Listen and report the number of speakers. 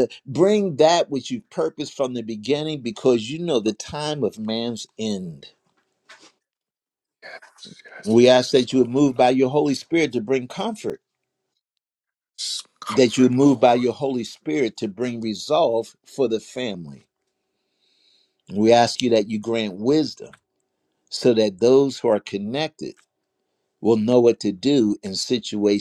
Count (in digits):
2